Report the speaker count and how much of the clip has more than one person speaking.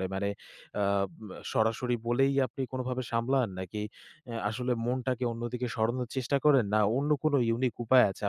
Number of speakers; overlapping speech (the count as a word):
one, no overlap